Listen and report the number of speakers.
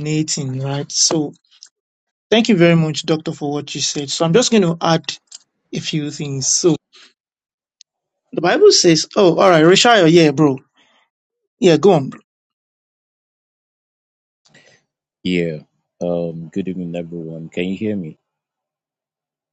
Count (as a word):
two